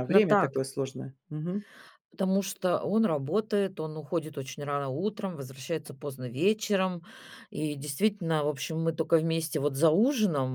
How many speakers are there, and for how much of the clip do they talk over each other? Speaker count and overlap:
2, about 5%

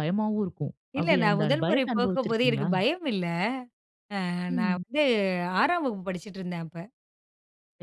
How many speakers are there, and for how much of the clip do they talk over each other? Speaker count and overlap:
2, about 28%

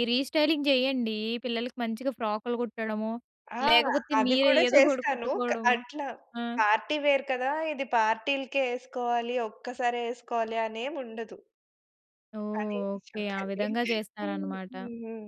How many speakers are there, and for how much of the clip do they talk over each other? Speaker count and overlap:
2, about 15%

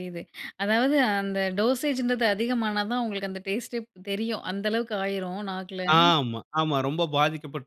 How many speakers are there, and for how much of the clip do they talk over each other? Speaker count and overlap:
2, no overlap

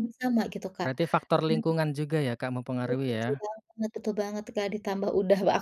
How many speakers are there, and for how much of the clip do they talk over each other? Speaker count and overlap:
2, about 13%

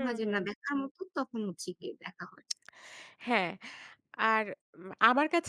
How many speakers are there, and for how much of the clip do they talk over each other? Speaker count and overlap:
2, about 9%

